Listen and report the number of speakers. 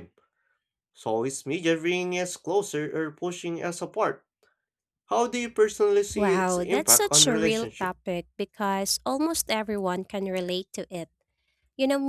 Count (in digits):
2